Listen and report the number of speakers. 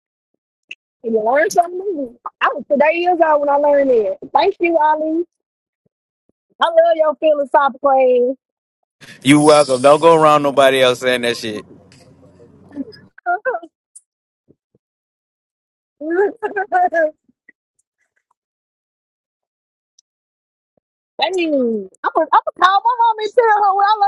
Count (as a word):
two